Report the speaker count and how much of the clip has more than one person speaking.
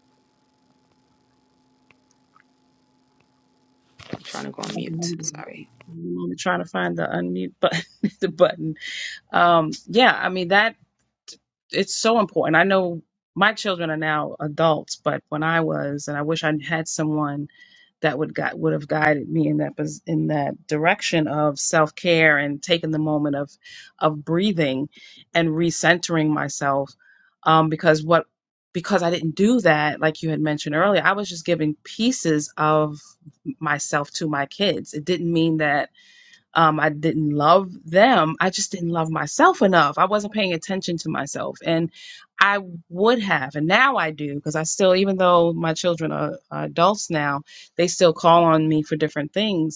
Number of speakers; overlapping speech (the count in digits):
2, about 1%